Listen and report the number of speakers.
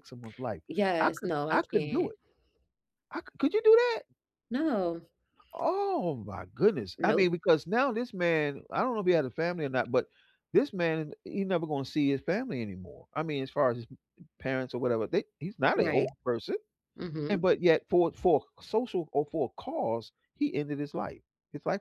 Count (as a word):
two